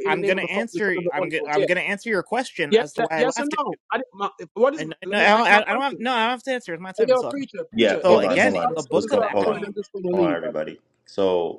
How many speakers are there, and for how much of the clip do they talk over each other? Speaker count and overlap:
three, about 58%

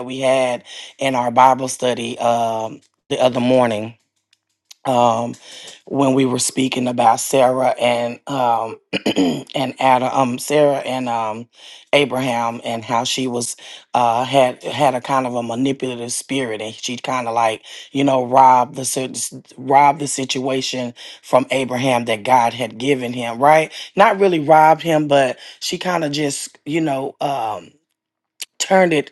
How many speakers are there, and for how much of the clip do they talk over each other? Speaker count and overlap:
one, no overlap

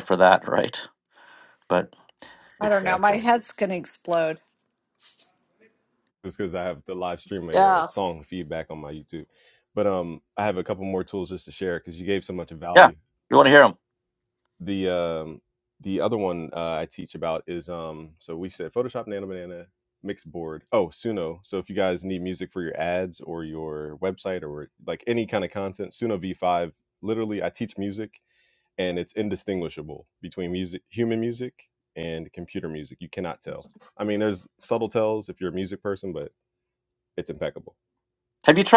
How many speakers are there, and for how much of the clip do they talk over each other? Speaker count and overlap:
three, about 3%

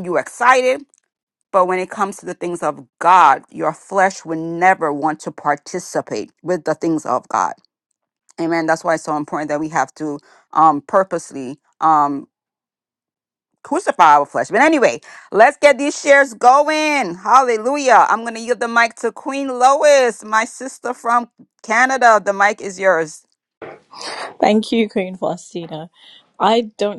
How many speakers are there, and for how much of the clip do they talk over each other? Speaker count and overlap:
two, no overlap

